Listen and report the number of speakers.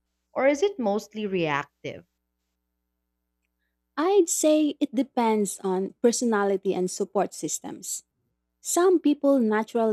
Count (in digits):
2